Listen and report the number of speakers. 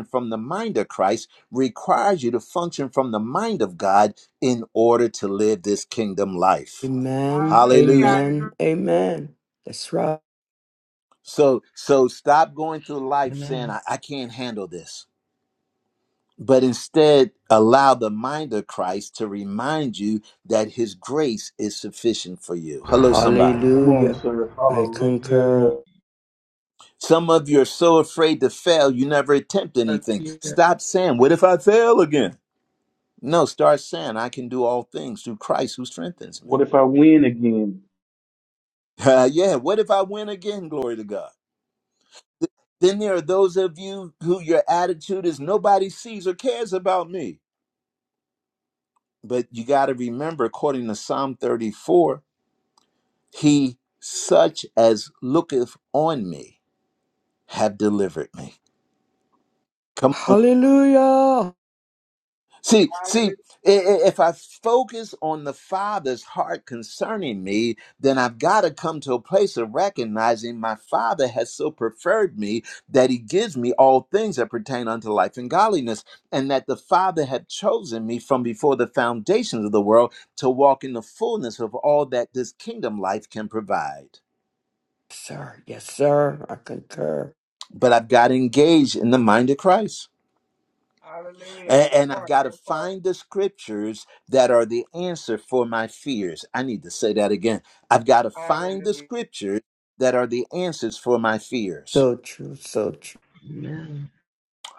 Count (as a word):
five